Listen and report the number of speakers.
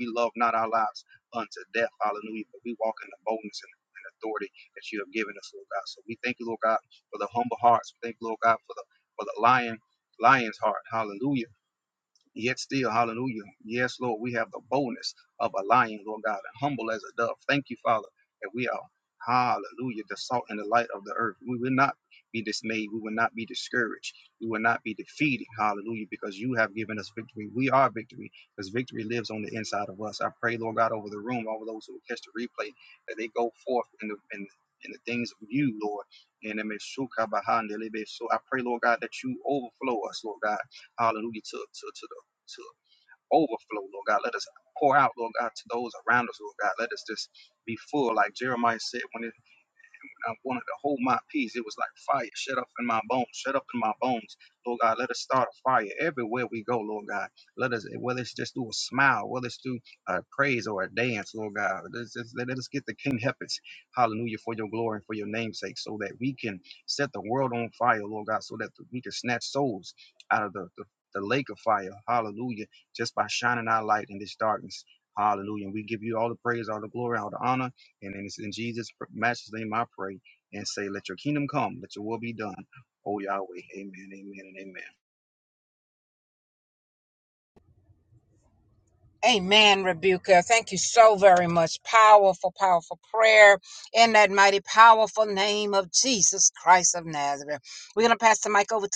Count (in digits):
2